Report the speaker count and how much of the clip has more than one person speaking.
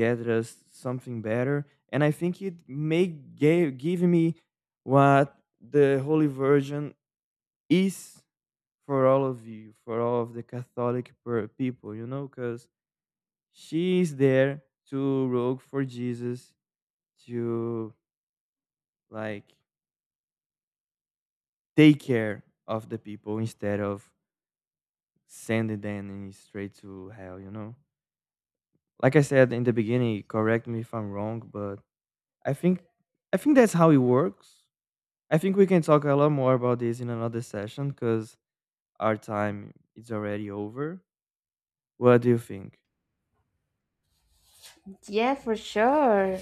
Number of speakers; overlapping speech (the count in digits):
2, no overlap